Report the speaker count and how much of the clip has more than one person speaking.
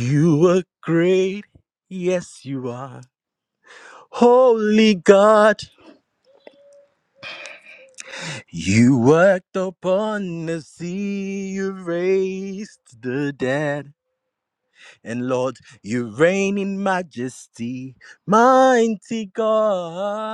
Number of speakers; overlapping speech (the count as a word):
one, no overlap